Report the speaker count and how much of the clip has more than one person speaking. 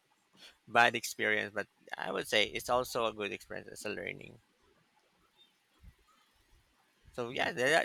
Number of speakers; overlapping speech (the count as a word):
one, no overlap